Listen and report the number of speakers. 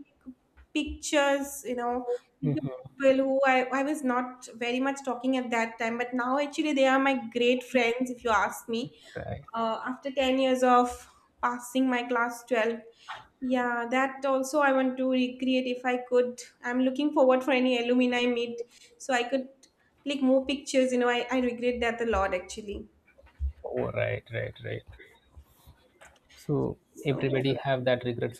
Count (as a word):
two